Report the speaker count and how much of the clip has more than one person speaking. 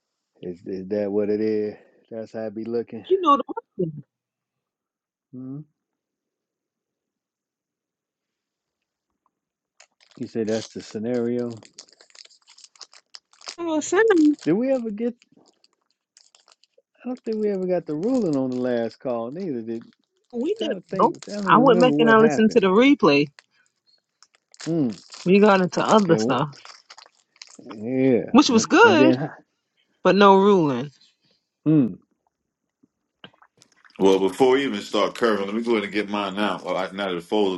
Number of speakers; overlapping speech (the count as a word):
three, about 8%